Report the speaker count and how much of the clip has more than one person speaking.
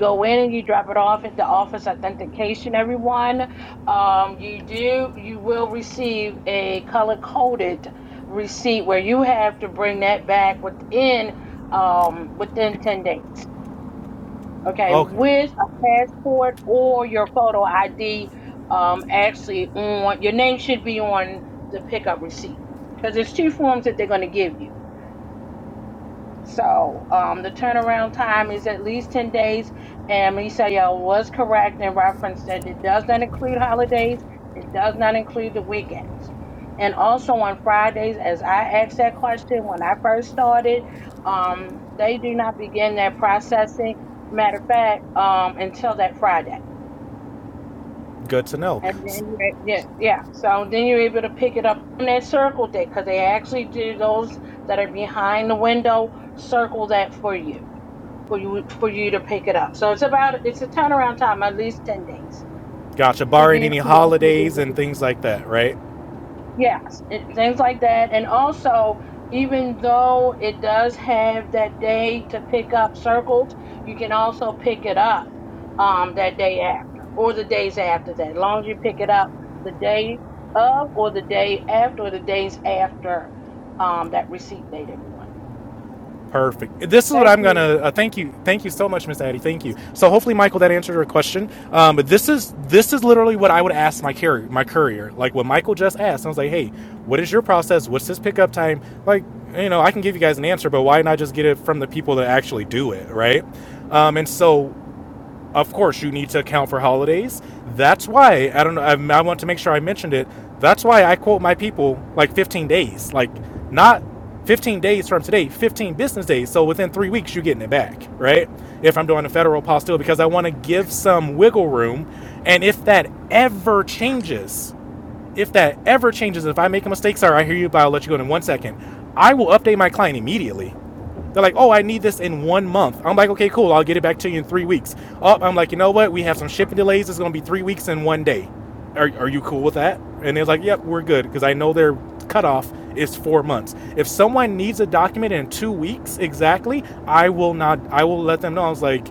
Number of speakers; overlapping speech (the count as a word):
two, about 1%